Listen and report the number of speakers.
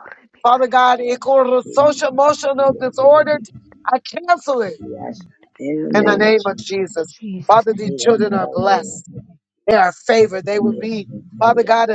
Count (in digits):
3